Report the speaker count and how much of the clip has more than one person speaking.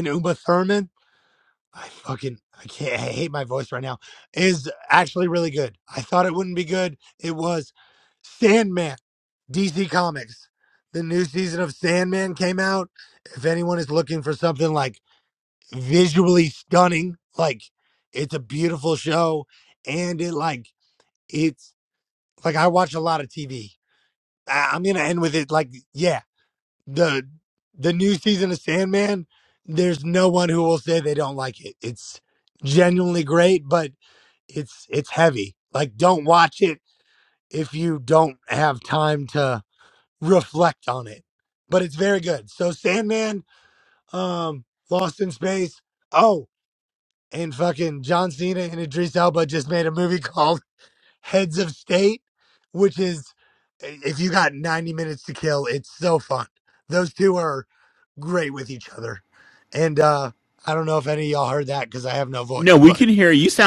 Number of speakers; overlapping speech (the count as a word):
two, about 1%